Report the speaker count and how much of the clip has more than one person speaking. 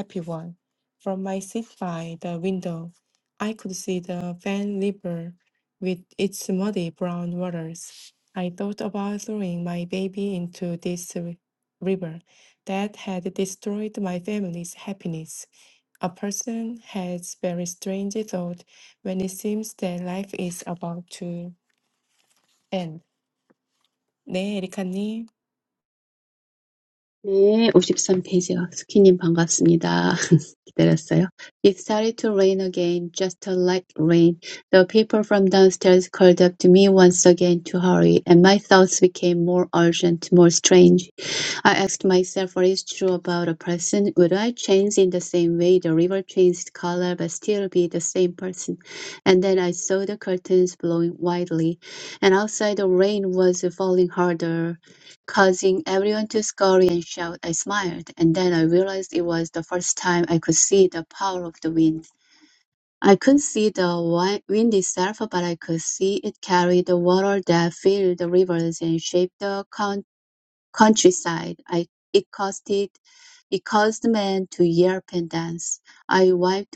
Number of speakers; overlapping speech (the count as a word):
two, no overlap